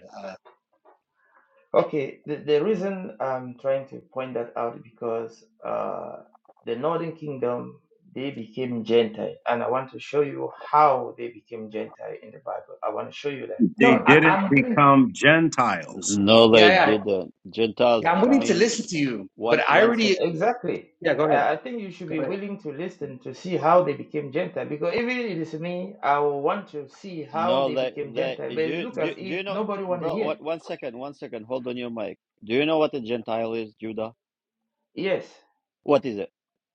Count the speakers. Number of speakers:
four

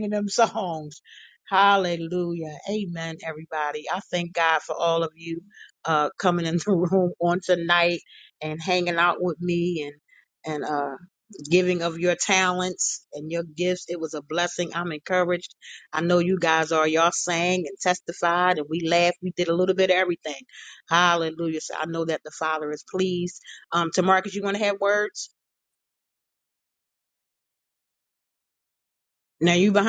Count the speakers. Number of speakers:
one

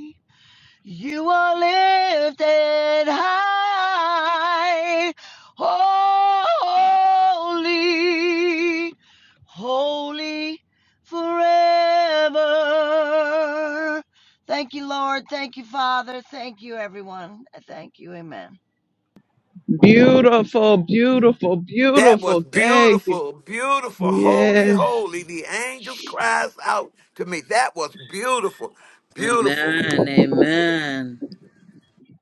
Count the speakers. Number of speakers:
four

